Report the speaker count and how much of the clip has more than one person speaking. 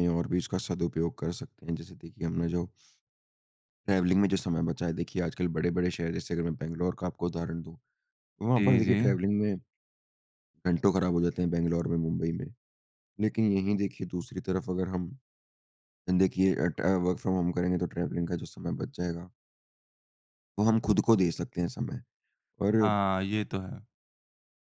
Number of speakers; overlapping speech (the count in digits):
2, about 2%